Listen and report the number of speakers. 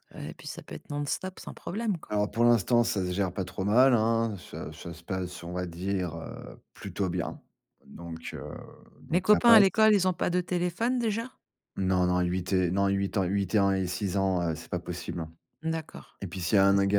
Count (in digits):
2